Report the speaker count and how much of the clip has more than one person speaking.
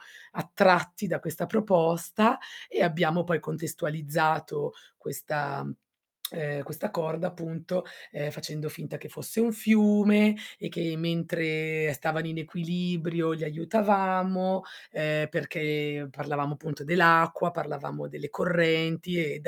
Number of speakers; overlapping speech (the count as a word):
one, no overlap